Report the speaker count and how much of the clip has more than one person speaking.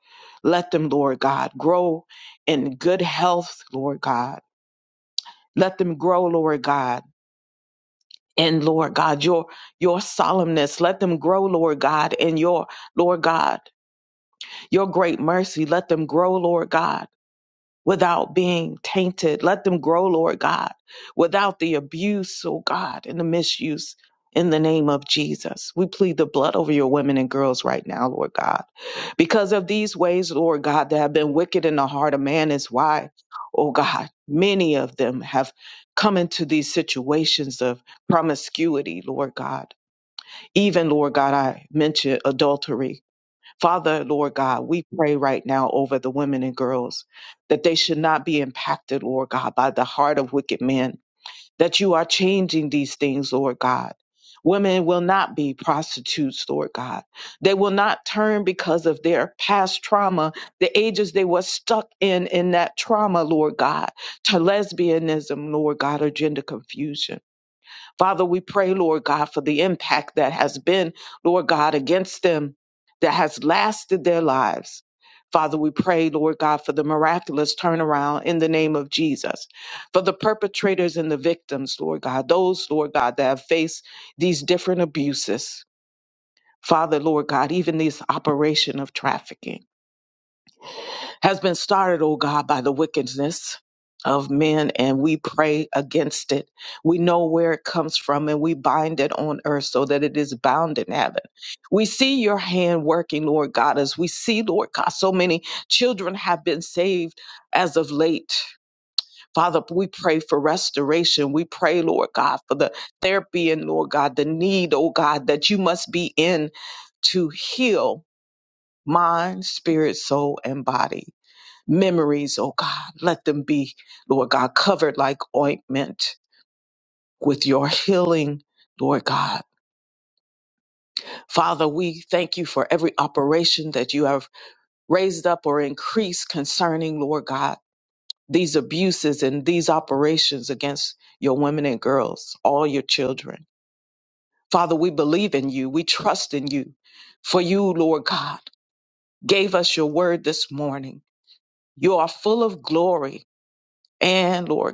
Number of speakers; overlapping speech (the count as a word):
one, no overlap